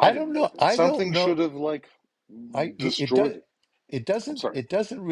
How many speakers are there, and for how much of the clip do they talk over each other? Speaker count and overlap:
two, about 44%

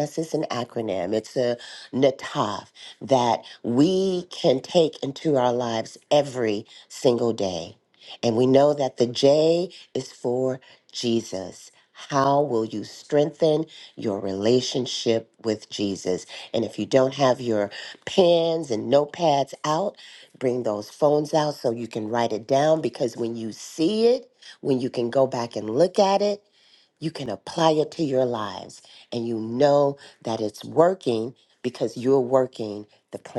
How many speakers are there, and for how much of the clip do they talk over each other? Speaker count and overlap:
one, no overlap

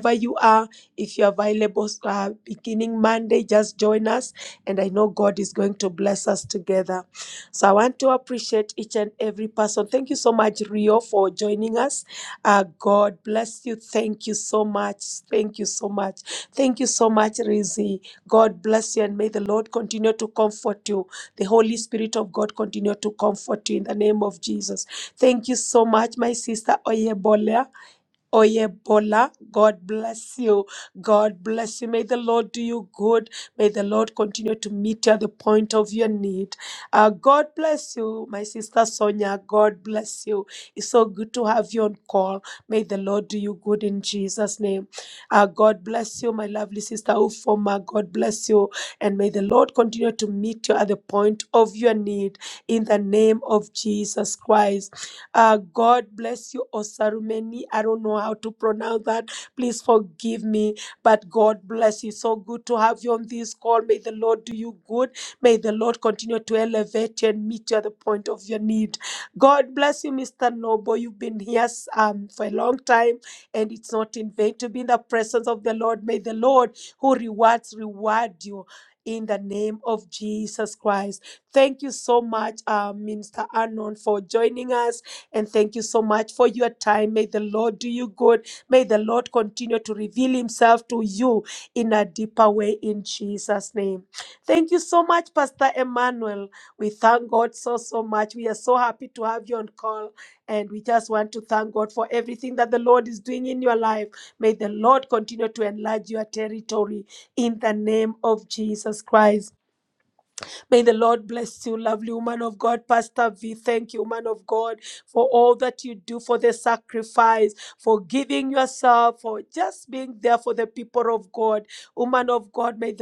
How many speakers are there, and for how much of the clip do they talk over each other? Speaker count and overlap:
one, no overlap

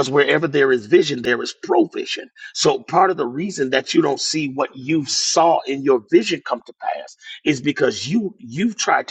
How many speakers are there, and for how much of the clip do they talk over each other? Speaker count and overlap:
one, no overlap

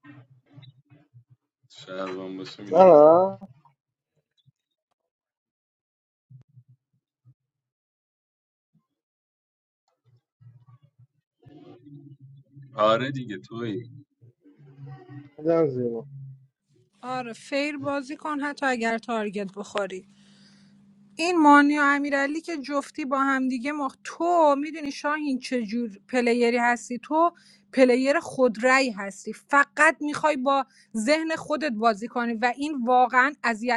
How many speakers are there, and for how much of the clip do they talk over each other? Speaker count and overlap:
three, about 1%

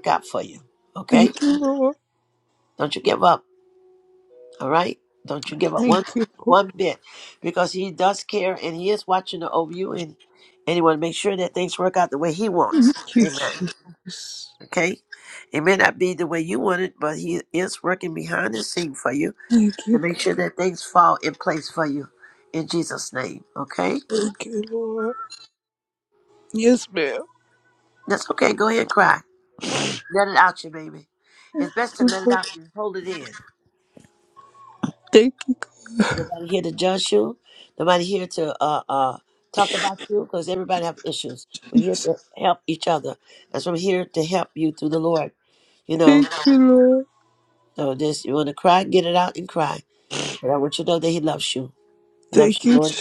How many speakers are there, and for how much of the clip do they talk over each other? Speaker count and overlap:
two, about 6%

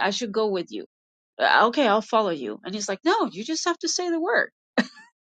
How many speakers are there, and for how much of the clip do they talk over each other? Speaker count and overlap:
one, no overlap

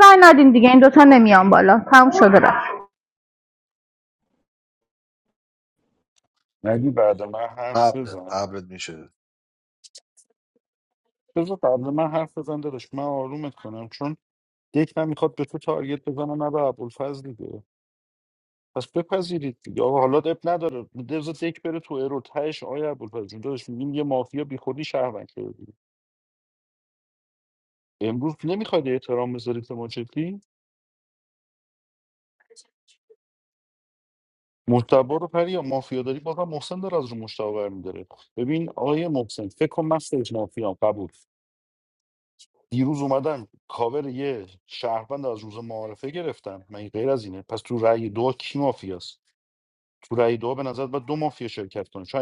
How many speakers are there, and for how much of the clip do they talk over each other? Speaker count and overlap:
three, about 1%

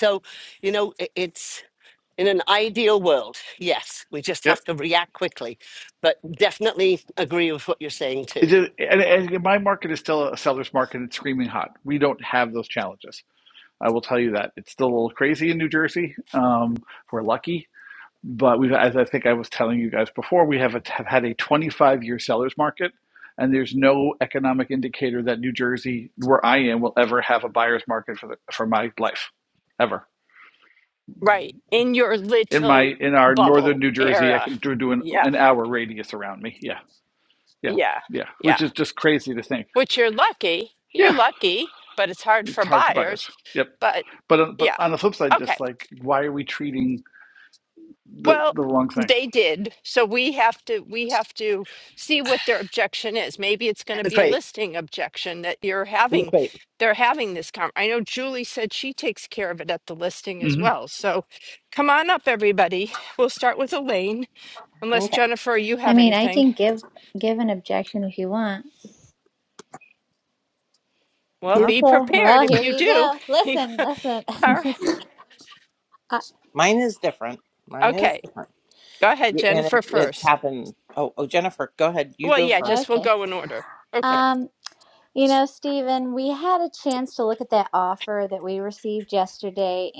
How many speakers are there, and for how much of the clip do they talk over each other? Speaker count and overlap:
five, about 12%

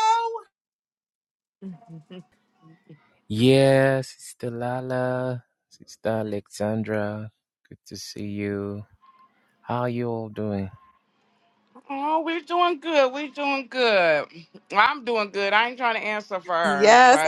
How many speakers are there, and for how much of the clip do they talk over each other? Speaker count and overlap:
three, about 4%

